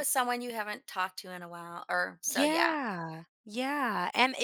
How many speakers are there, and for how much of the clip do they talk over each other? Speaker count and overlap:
2, about 11%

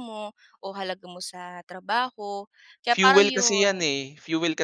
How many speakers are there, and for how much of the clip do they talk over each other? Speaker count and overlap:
2, about 20%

